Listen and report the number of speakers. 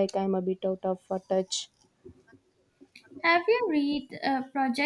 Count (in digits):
2